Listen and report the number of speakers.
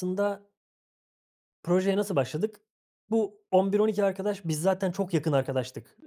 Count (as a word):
one